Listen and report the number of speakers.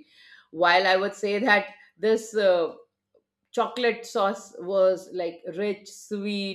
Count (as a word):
one